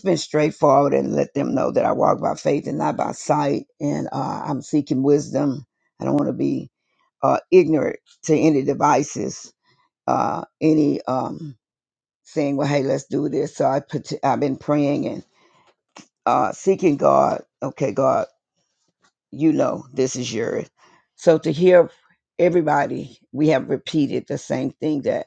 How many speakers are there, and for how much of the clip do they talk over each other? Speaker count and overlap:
1, no overlap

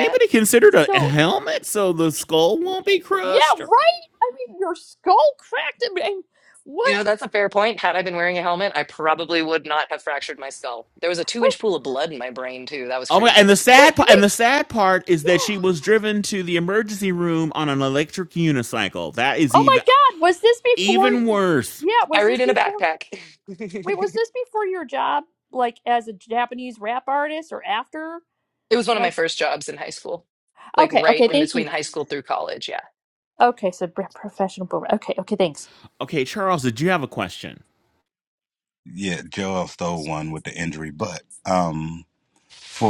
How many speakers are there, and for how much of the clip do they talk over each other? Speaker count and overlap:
4, about 12%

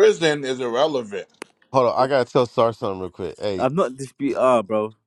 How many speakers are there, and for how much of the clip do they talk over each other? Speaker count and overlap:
3, about 4%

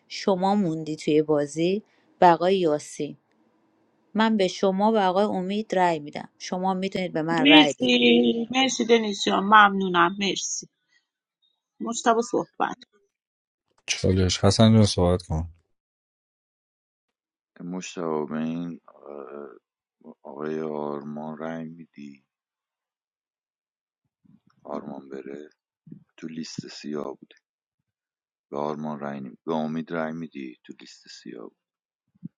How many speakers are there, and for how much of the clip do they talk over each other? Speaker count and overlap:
4, about 2%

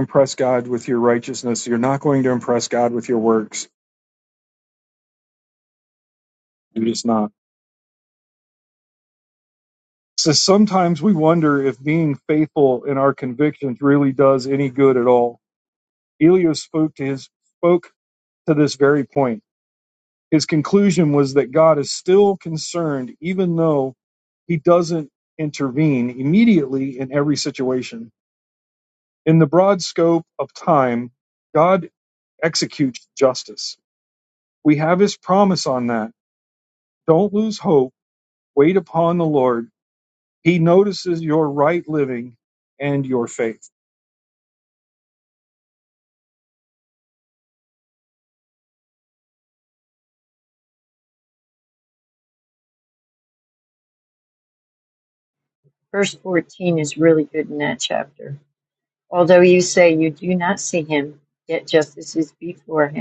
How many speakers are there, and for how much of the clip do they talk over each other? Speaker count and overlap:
2, no overlap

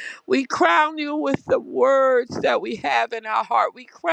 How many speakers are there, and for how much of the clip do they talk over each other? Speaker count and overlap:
1, no overlap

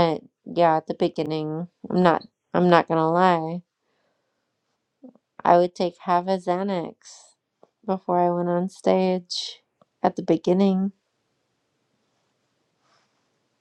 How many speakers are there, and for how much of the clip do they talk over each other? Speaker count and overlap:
1, no overlap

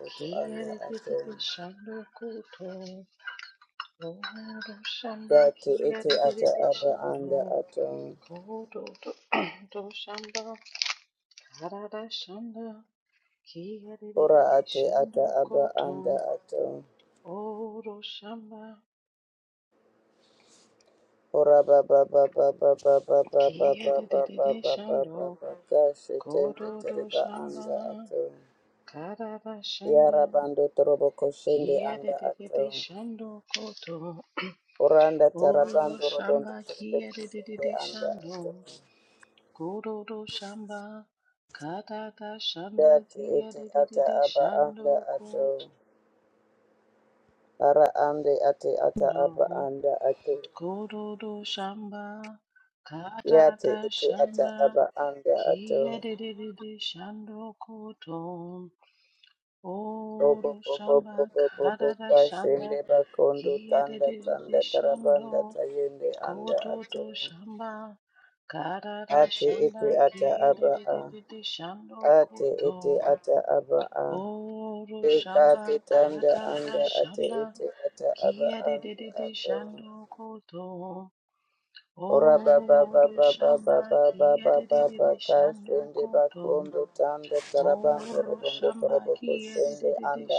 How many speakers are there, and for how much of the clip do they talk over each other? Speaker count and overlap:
2, about 39%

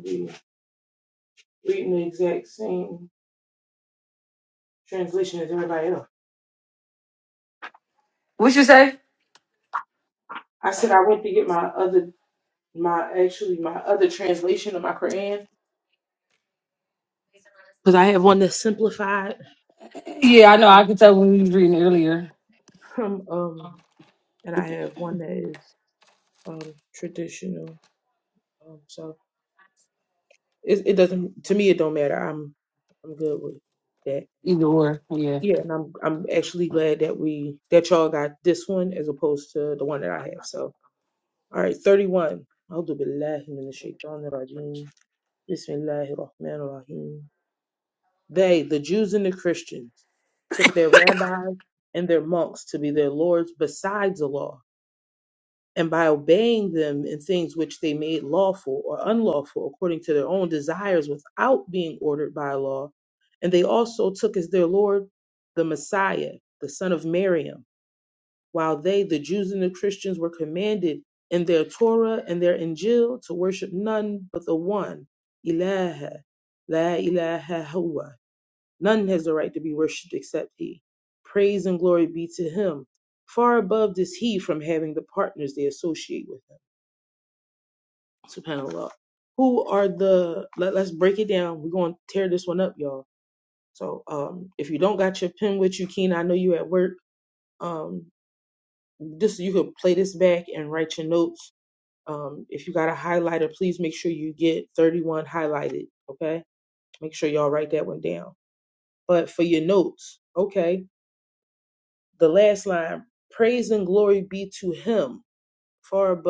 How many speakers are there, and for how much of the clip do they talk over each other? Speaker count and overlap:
2, no overlap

